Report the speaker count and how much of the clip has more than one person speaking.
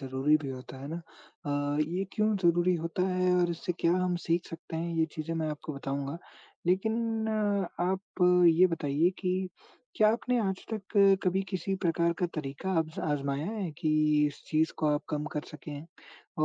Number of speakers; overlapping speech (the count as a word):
one, no overlap